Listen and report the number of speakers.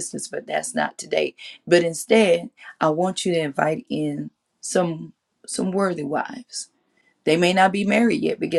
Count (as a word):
one